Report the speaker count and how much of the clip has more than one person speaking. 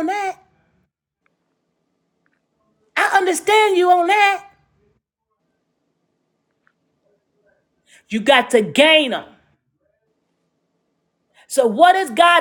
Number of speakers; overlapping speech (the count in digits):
1, no overlap